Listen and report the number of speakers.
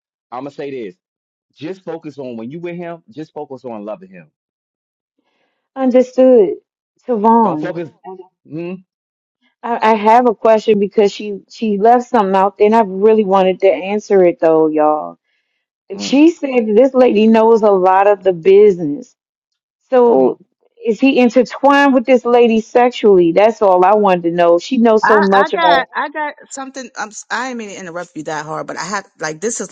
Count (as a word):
three